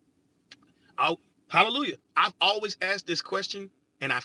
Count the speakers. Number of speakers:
1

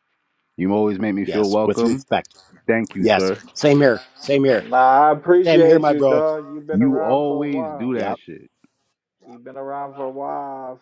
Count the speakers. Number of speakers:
3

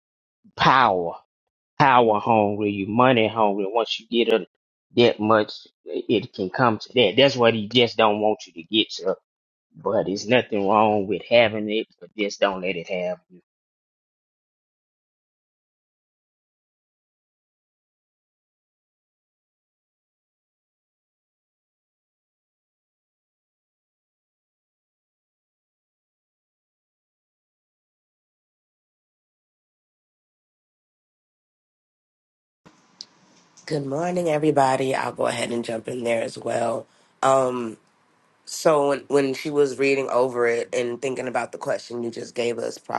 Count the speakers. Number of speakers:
2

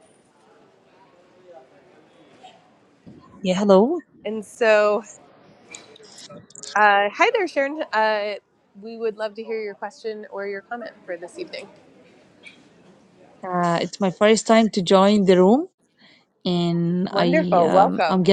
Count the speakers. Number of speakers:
2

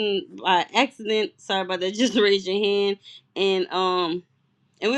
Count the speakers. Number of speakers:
1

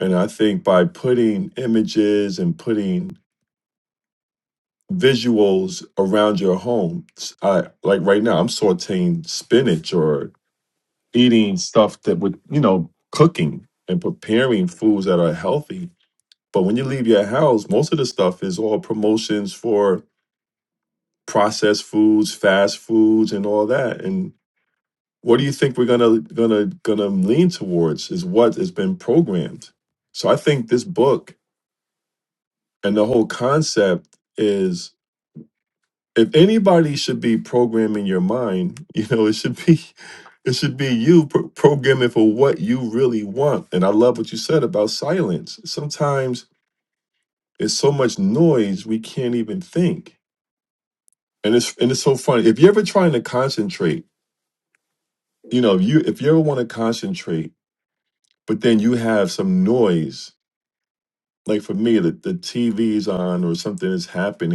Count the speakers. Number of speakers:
1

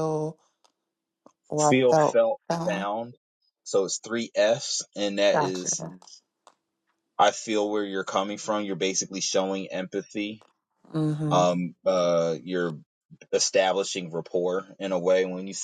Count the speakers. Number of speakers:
2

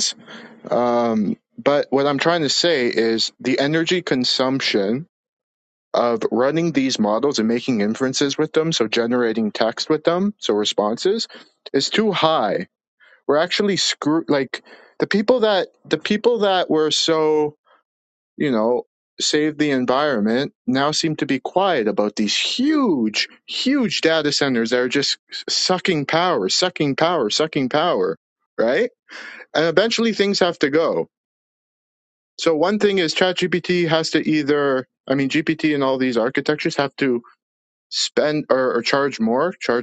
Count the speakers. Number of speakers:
1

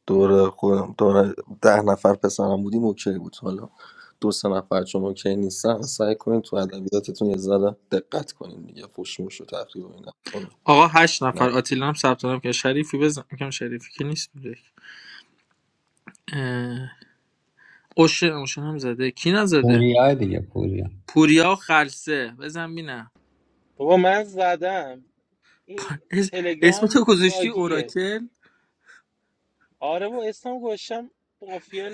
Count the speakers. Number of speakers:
4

